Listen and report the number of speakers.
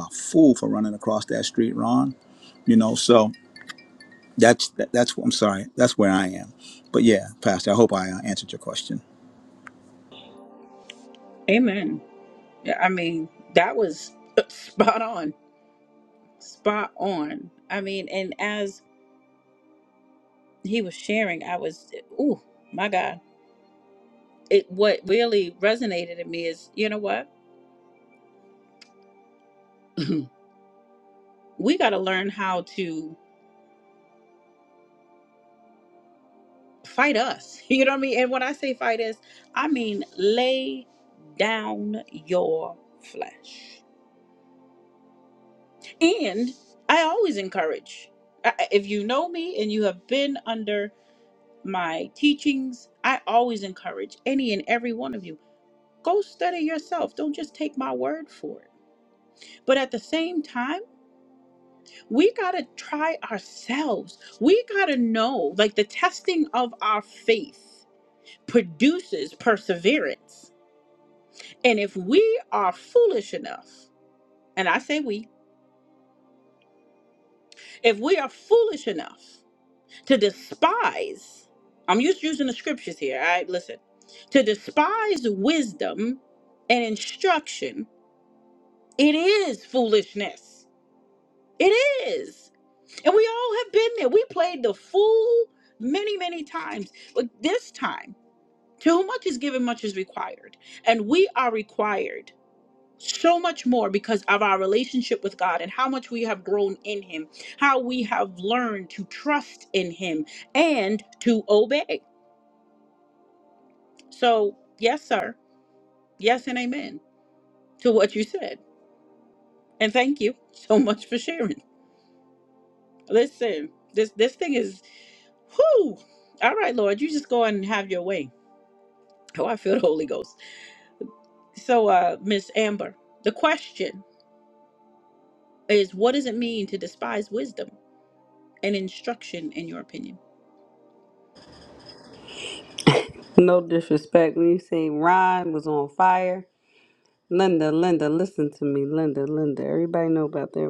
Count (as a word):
three